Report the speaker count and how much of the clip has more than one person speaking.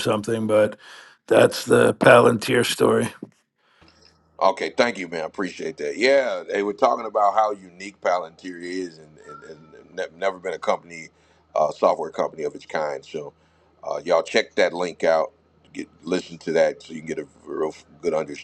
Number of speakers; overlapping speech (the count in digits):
2, no overlap